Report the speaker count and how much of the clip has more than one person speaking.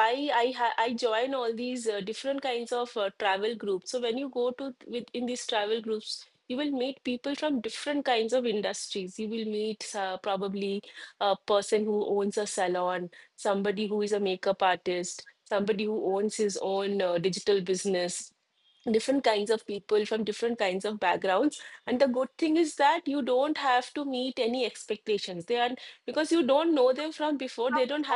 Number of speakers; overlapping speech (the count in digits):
1, no overlap